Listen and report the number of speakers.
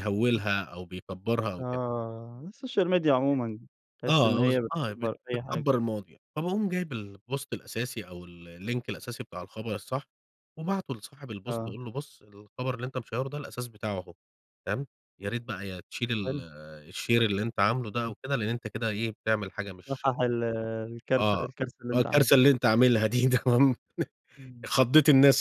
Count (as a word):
two